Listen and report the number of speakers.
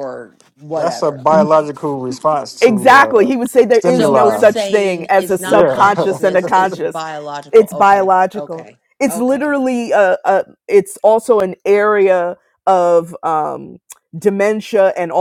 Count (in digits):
3